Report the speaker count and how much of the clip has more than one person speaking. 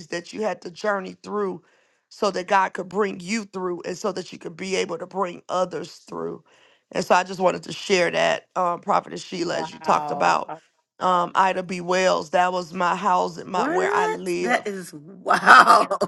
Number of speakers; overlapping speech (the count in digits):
2, about 13%